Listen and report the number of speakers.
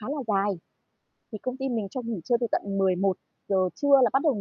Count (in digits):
1